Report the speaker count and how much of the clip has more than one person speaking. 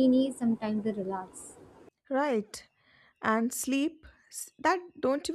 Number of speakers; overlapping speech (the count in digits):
2, no overlap